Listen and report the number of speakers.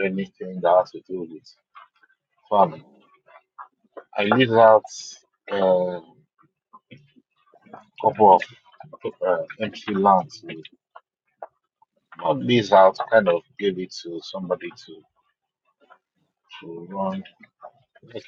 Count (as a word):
one